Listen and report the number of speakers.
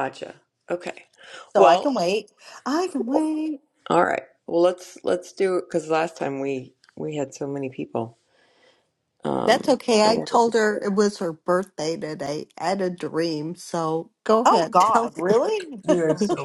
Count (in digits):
3